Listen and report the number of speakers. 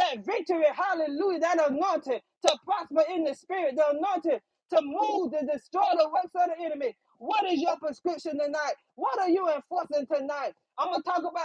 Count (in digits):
1